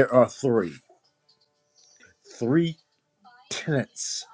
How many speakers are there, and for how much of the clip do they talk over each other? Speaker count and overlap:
one, no overlap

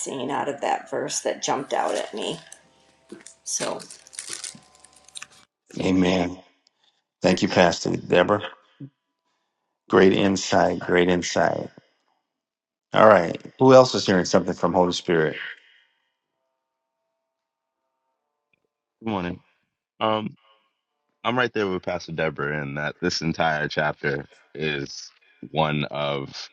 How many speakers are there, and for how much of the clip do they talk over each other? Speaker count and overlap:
three, no overlap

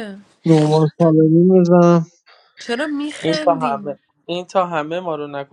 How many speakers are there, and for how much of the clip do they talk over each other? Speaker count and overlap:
three, about 13%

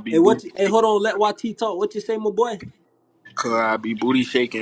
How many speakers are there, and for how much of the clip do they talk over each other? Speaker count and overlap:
two, about 13%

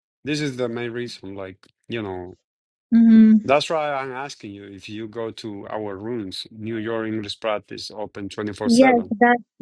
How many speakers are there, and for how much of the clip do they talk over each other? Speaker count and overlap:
two, about 5%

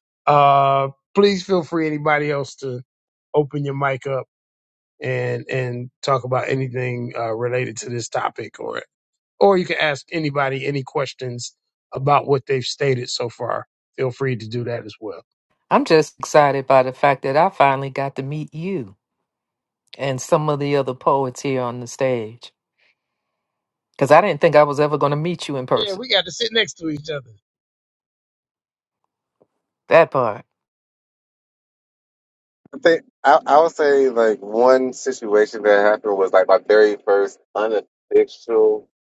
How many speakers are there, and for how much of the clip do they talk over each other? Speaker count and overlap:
three, about 1%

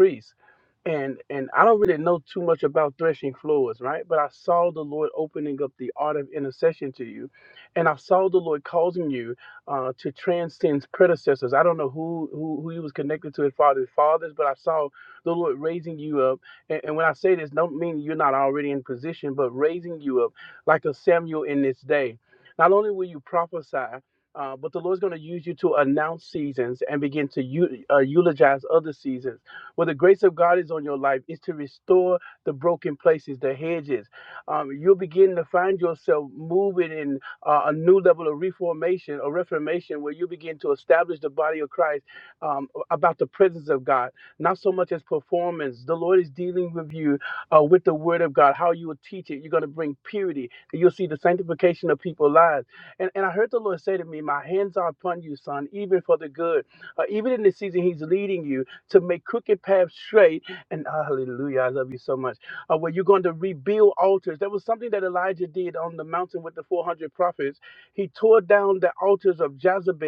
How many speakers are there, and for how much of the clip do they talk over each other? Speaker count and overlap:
one, no overlap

